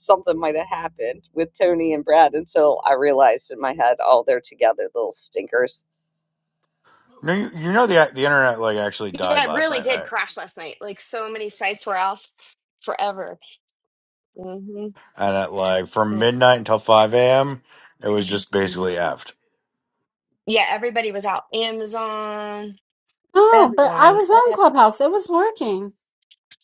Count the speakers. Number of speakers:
four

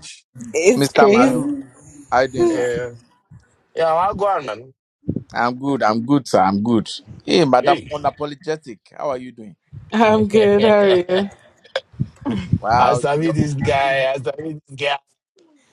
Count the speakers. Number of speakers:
three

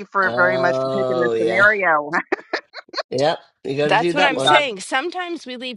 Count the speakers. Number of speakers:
three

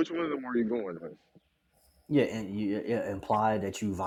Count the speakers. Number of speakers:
two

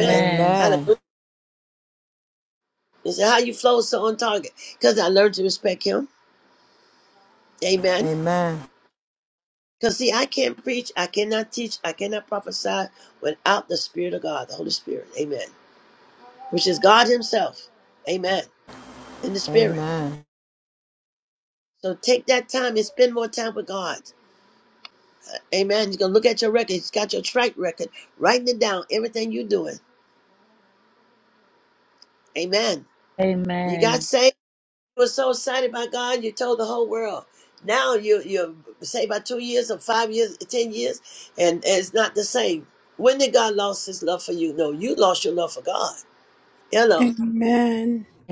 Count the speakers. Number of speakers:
four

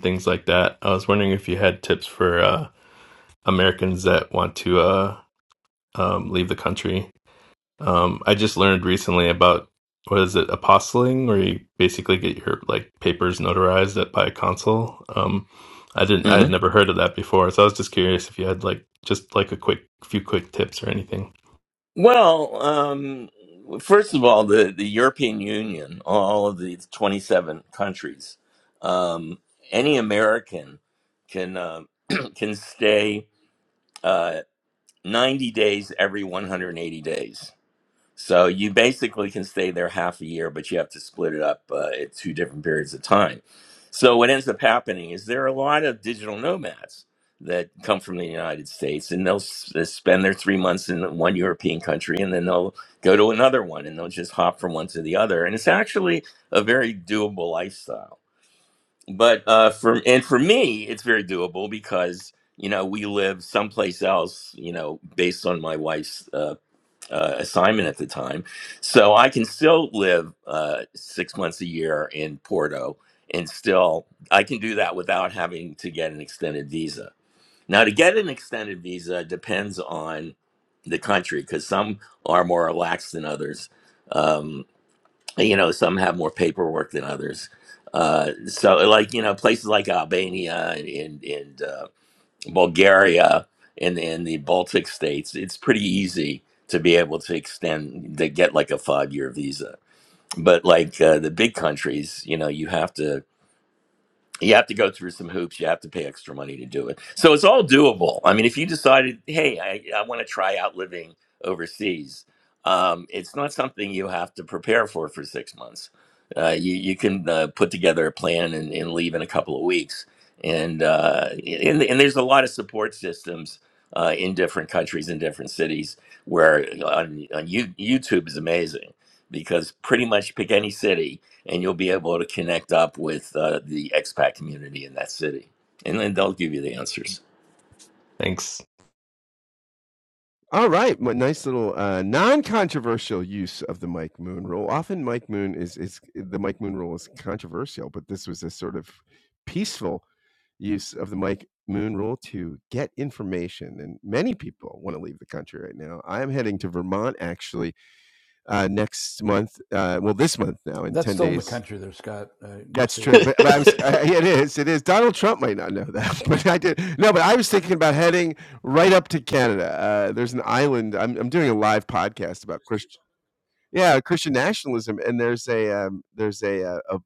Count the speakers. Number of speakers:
four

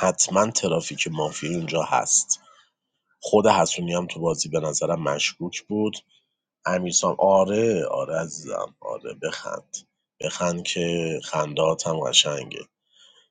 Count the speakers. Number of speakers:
one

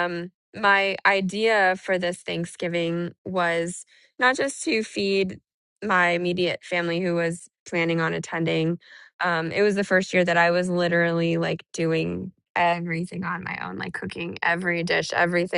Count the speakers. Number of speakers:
one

